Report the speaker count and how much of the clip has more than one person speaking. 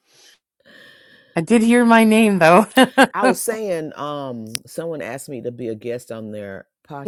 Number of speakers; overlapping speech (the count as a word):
two, about 1%